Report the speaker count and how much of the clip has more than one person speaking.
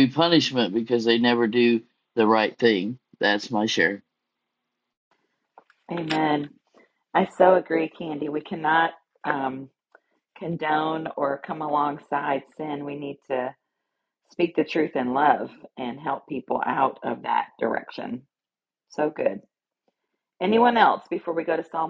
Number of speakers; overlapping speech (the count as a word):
two, no overlap